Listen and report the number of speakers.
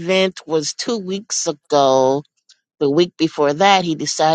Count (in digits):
1